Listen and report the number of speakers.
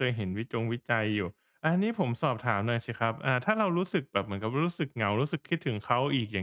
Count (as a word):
one